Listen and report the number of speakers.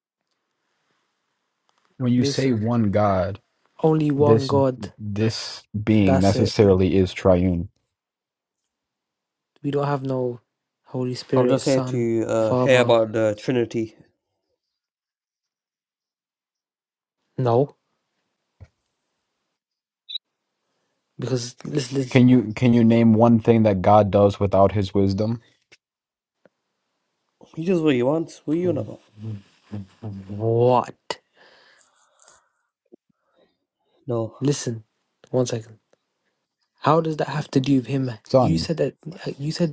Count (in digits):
3